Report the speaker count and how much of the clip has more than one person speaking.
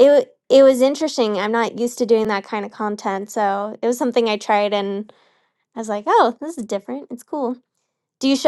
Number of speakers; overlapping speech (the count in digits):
1, no overlap